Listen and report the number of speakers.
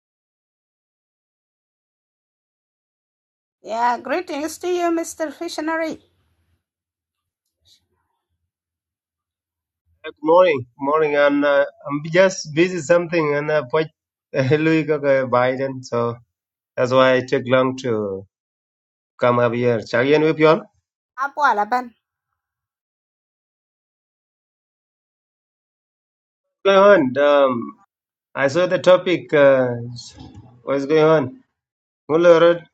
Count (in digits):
2